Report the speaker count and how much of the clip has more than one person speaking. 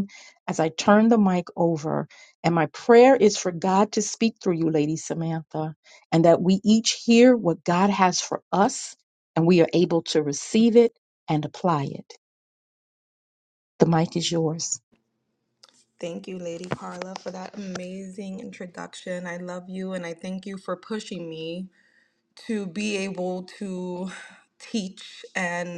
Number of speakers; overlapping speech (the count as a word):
two, no overlap